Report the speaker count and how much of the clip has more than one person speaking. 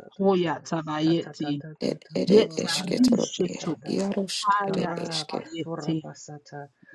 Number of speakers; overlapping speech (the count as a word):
three, about 39%